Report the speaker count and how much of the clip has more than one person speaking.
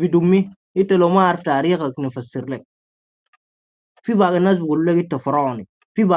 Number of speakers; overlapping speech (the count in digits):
1, no overlap